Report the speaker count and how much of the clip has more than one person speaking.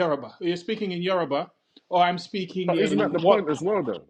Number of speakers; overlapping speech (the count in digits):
2, about 20%